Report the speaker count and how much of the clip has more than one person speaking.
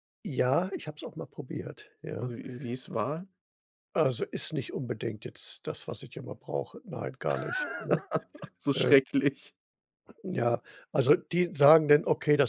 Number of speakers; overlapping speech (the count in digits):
2, about 3%